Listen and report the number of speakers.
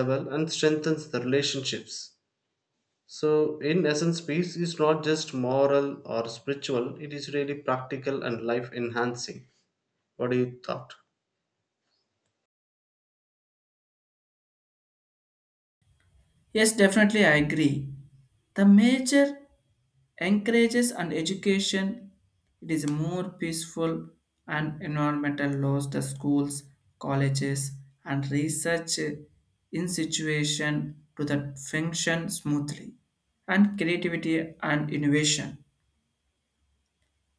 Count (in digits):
2